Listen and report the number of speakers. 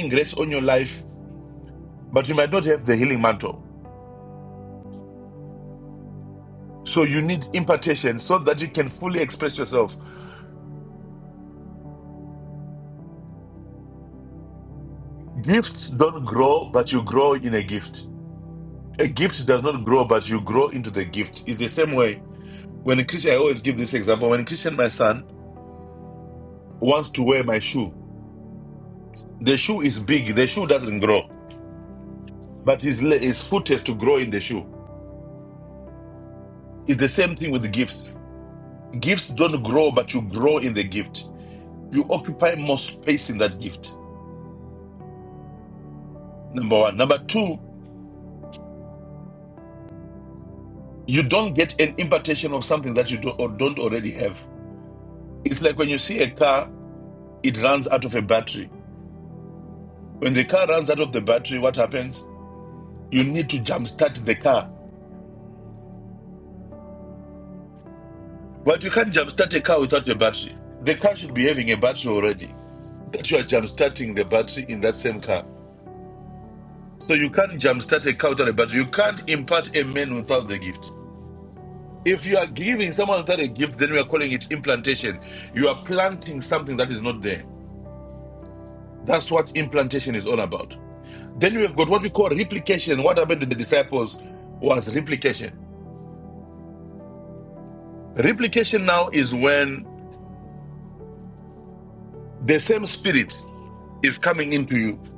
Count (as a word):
one